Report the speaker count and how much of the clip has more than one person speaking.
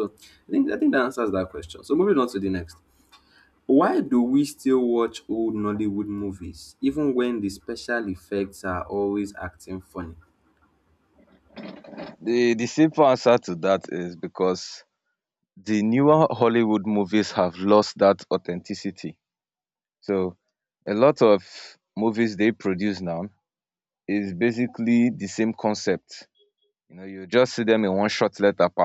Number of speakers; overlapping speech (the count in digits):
2, no overlap